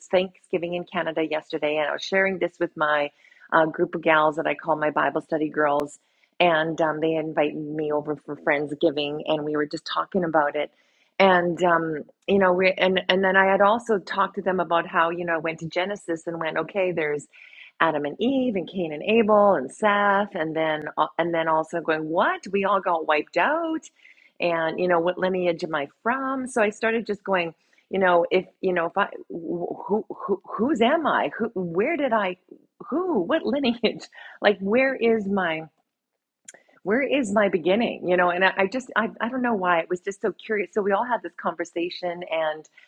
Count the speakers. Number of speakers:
one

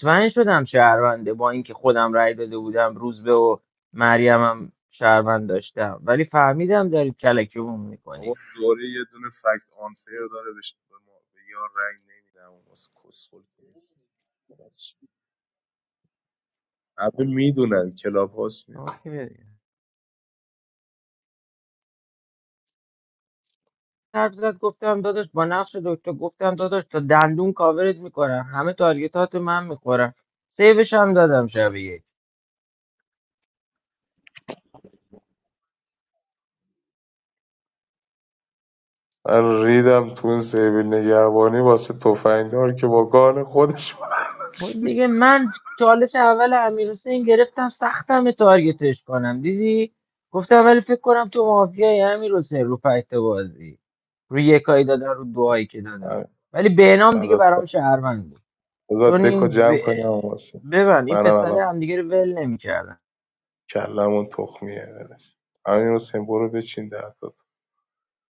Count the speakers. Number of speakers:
two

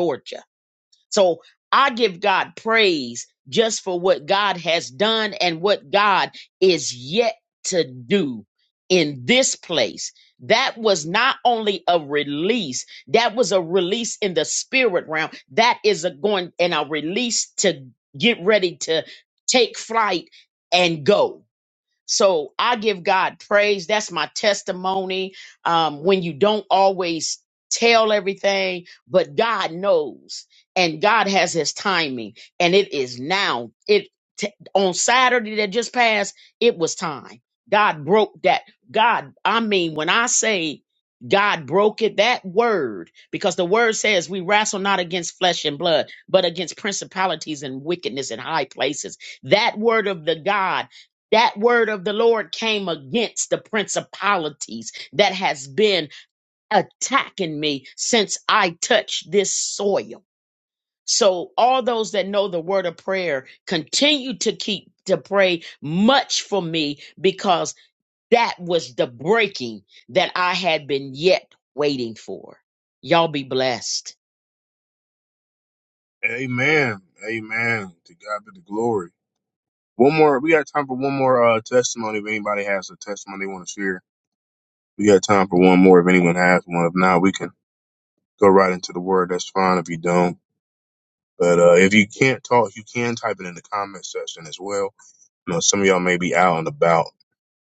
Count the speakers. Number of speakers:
two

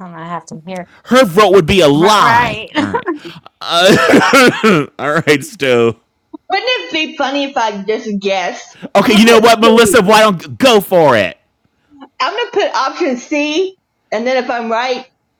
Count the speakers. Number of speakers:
three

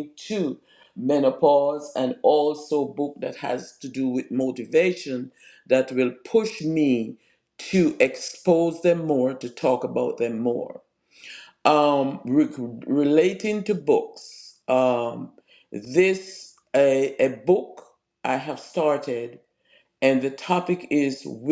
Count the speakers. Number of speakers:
one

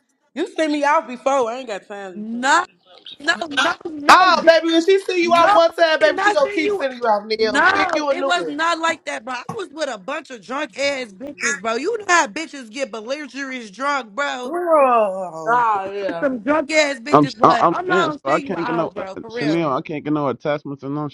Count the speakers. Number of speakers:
four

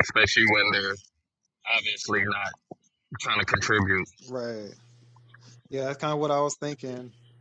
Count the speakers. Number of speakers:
two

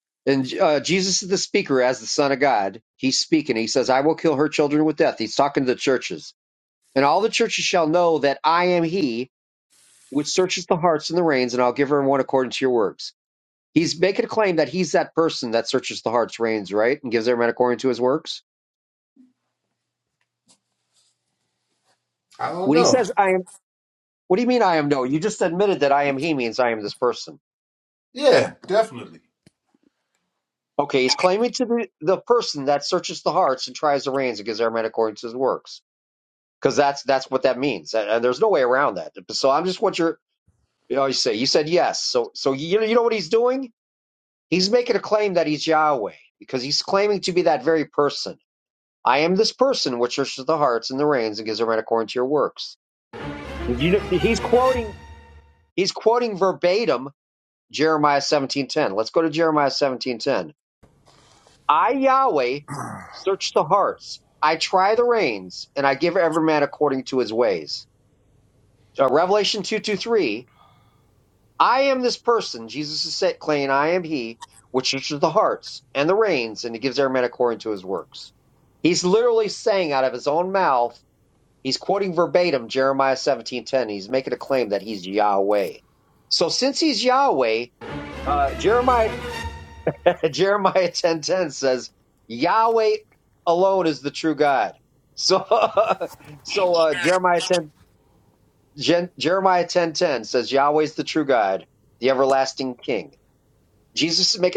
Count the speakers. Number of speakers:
two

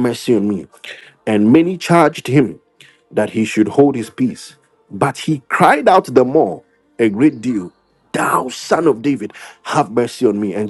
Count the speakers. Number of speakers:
one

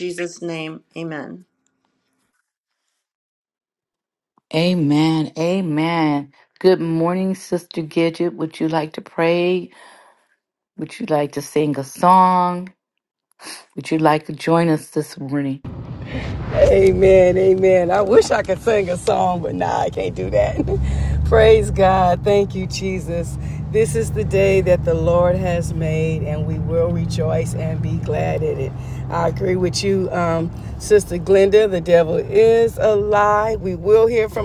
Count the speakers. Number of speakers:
three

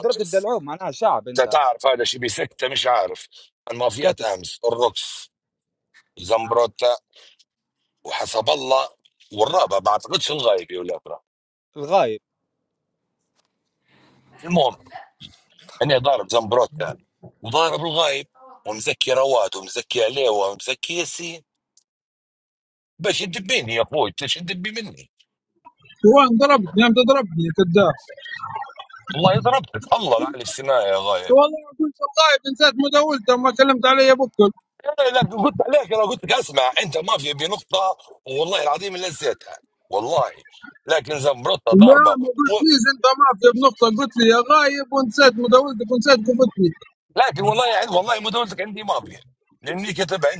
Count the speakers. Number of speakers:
three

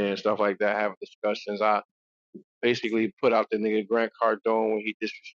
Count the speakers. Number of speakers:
one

